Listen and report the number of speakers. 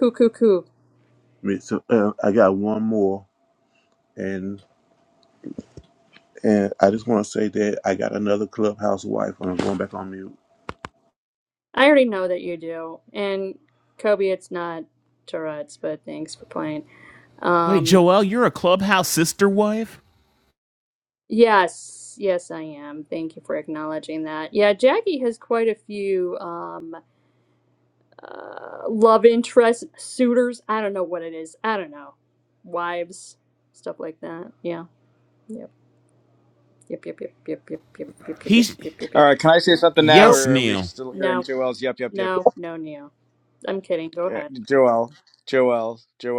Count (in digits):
4